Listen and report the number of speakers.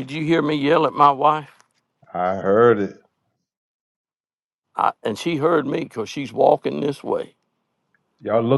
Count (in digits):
2